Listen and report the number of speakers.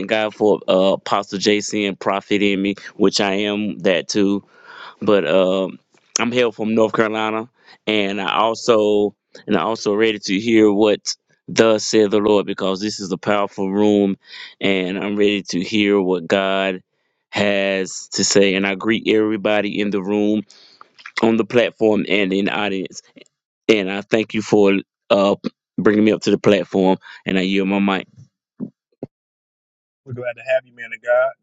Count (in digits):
2